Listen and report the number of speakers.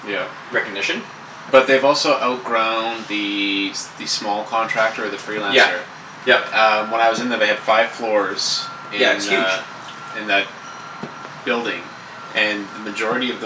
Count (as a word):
two